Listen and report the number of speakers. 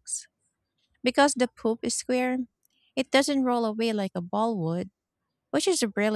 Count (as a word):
one